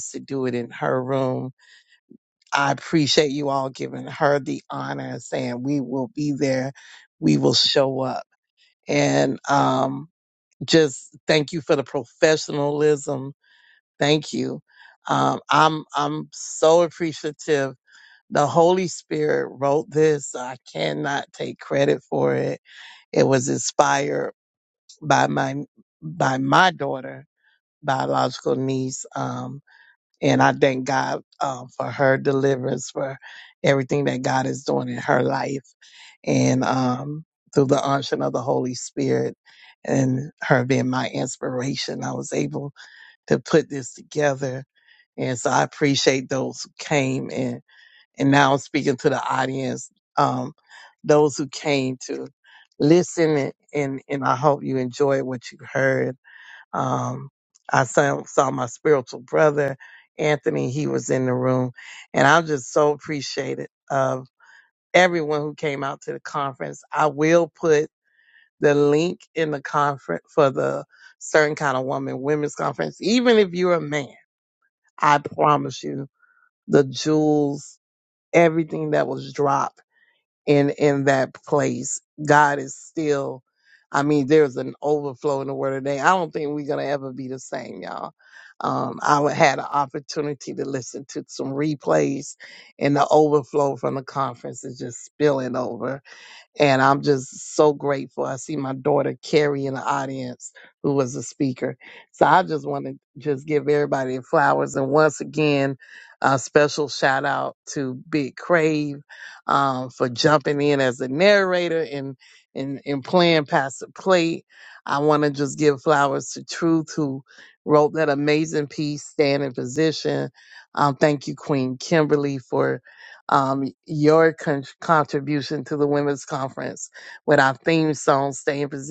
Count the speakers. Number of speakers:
one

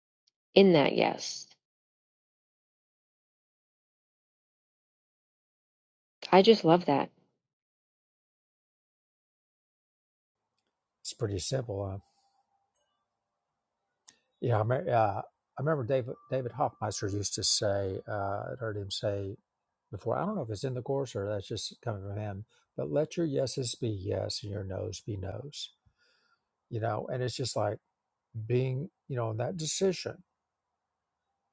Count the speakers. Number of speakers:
two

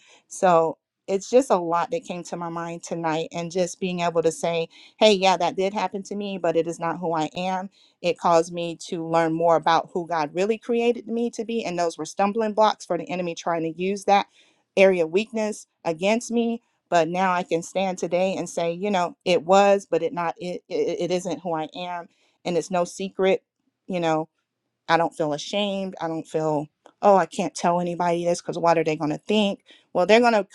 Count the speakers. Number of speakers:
one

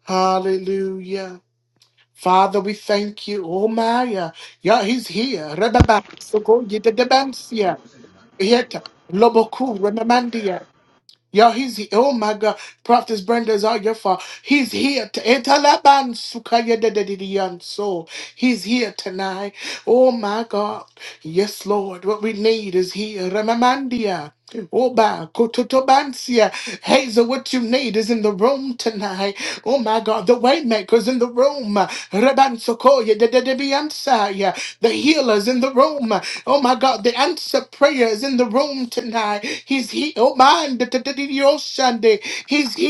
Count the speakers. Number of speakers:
one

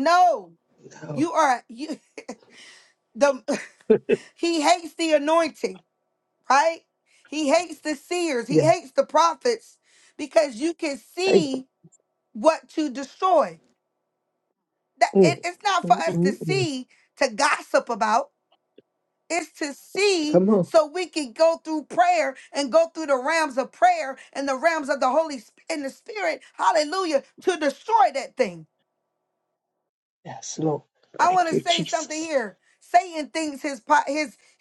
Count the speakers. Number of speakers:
two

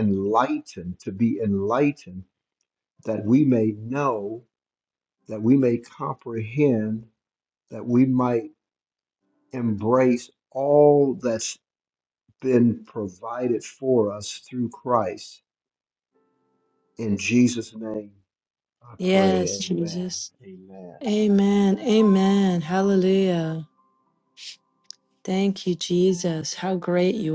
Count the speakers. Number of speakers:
two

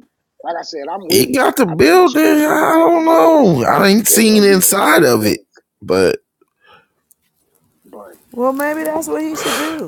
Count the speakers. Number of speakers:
three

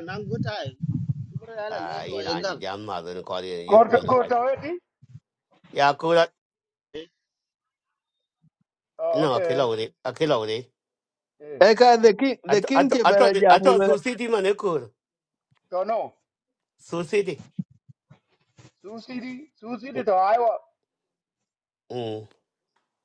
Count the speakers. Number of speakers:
four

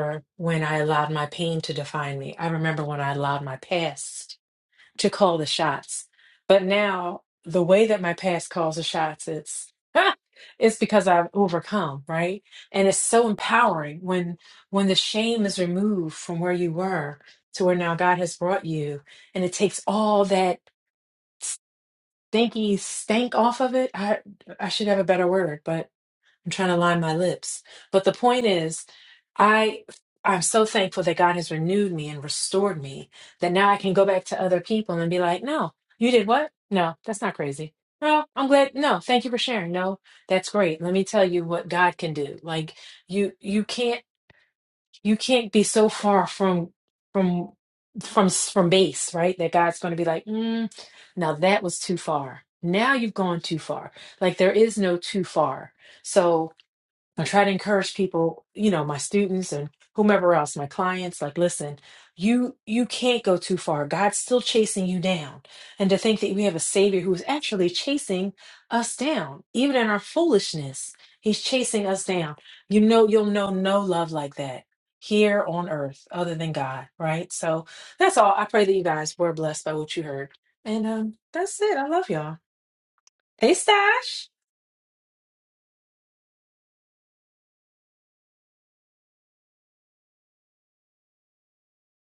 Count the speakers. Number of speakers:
one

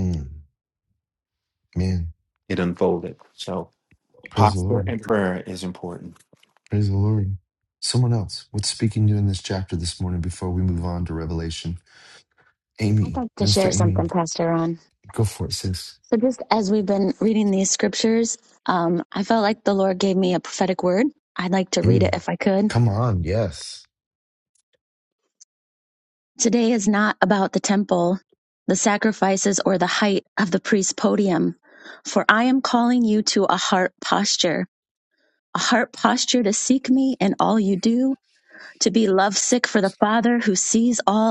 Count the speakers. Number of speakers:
three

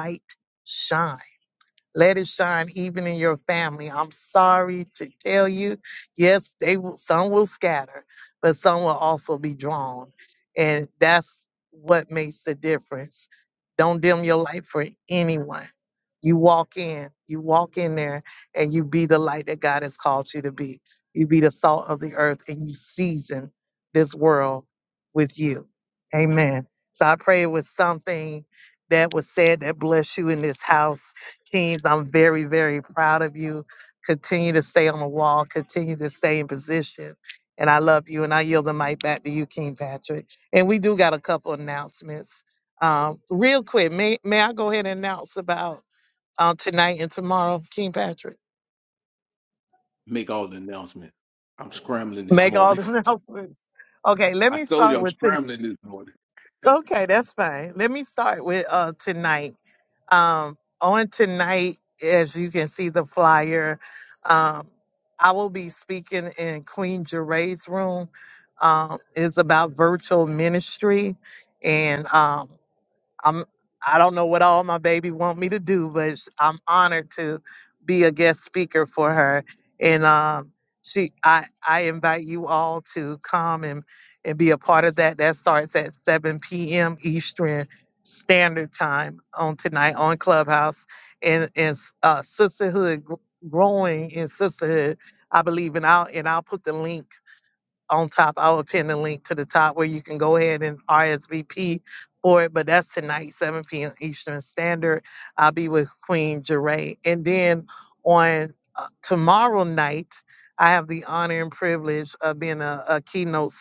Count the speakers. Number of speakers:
two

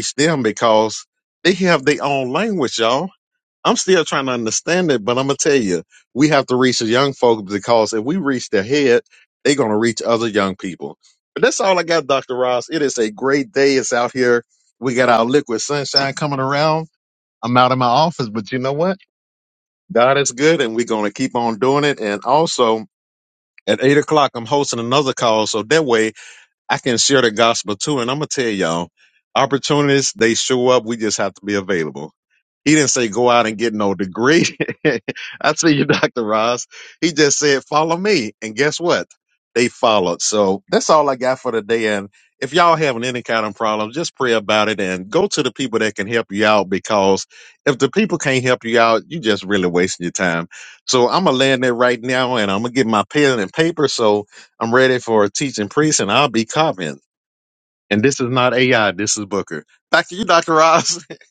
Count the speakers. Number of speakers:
one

